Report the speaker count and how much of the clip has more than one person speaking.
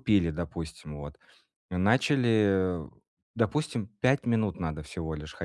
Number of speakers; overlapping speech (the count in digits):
1, no overlap